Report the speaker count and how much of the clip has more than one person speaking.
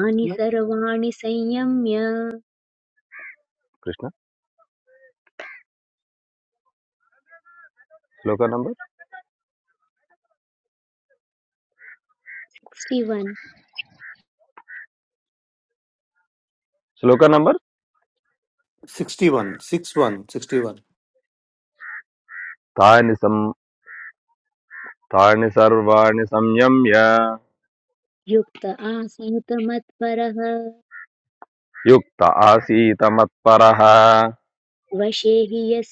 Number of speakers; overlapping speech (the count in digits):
3, no overlap